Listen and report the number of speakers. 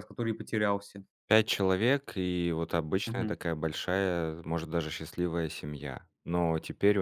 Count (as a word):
two